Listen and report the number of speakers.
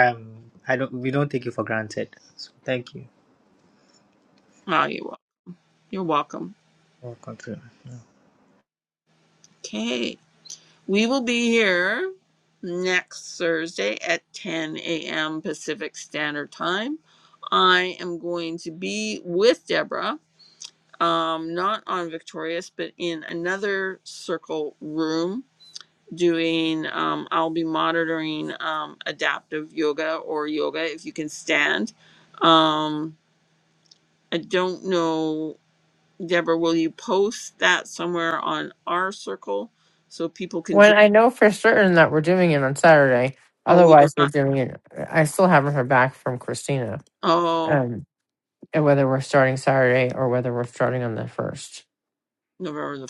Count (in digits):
3